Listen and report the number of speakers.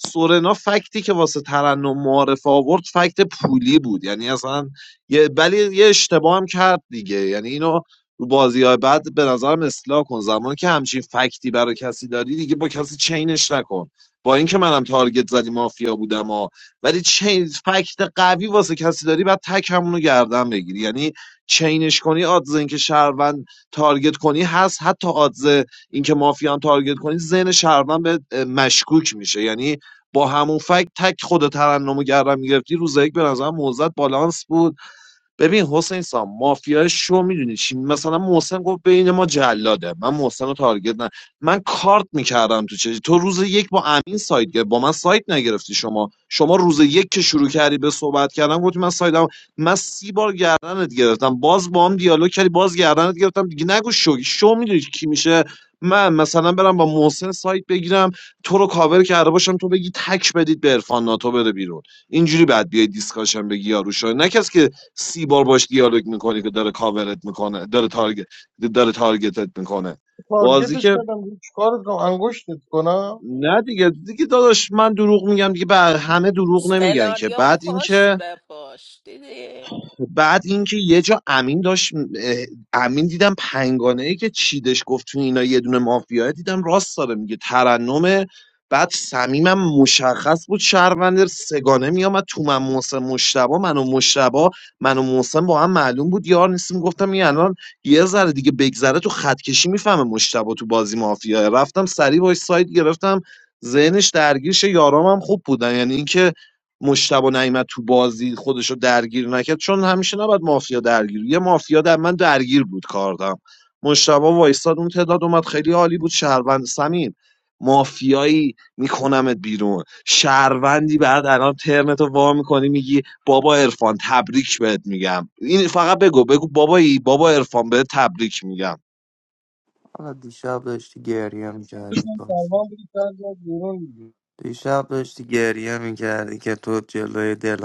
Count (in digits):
4